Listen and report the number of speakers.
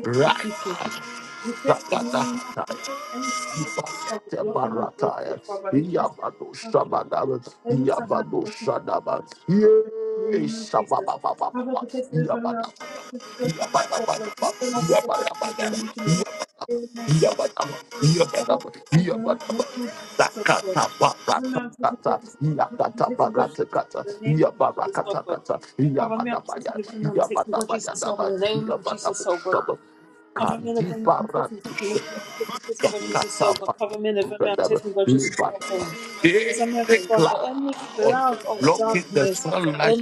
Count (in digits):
2